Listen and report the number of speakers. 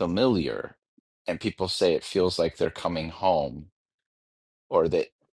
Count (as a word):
one